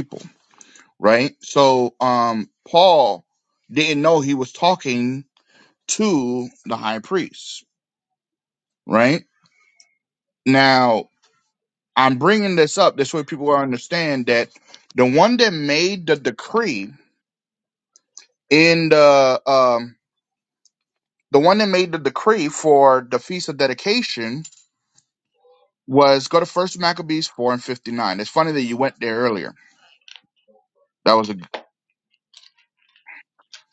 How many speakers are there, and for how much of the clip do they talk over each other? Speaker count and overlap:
one, no overlap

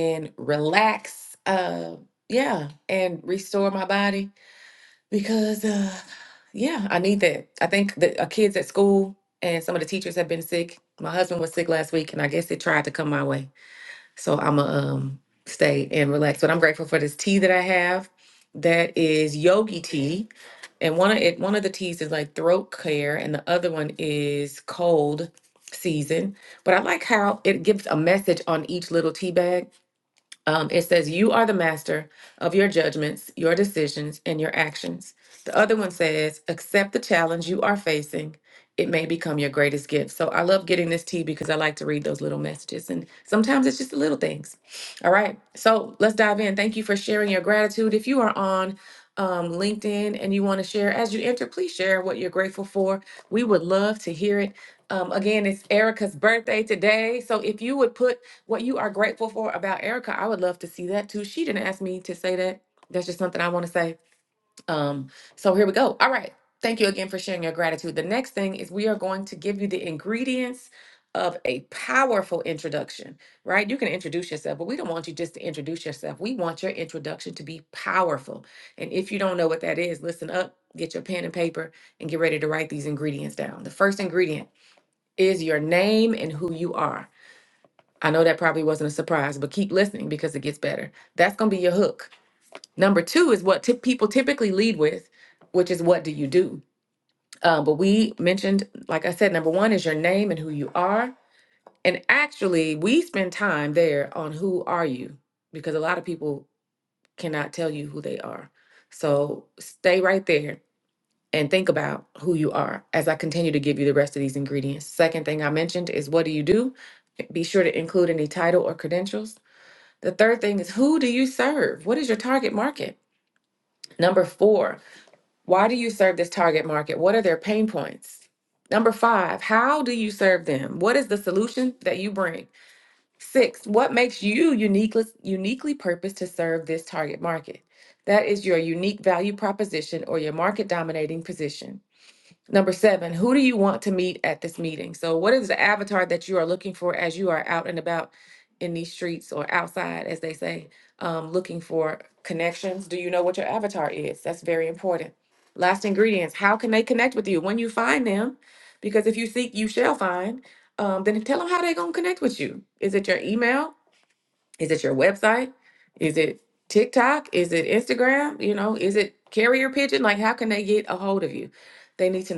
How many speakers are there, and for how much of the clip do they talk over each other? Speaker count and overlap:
one, no overlap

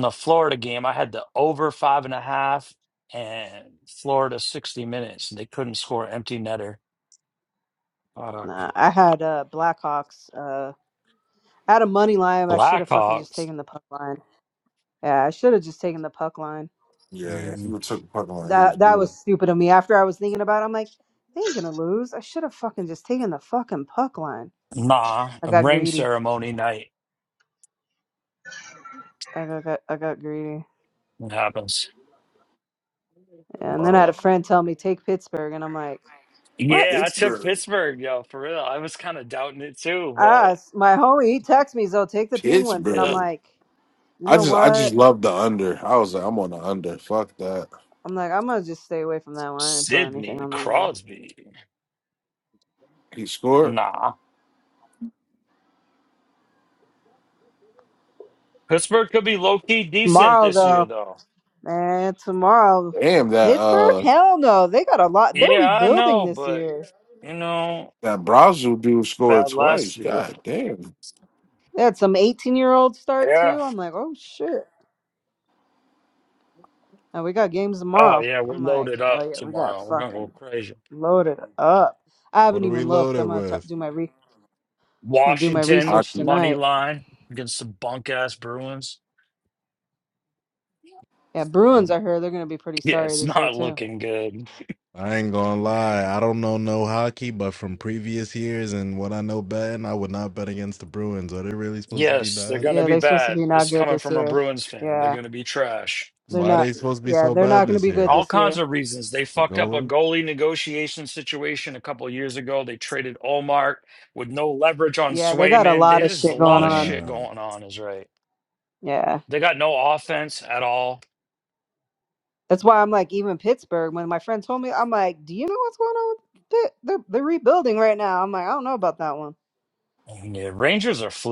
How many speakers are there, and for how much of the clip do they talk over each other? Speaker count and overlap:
four, about 19%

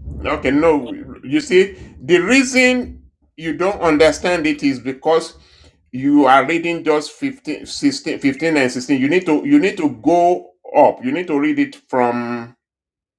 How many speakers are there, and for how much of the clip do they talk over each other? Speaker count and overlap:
one, no overlap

